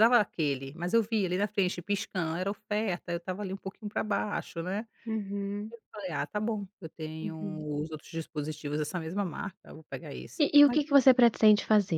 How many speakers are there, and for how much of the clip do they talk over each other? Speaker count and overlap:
2, about 4%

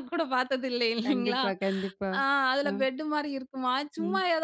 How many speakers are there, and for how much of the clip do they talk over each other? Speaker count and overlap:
2, about 20%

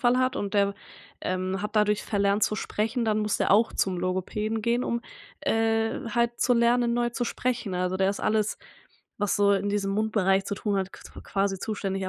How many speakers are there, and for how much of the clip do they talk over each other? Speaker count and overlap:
1, no overlap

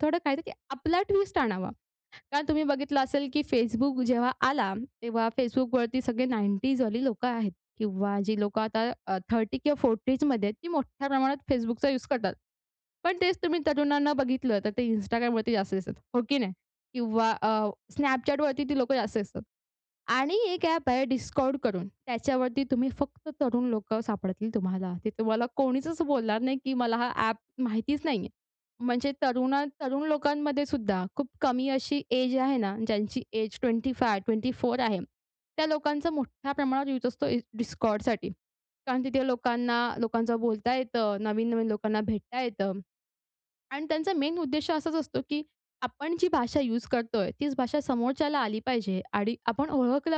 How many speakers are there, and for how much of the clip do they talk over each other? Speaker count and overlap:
1, no overlap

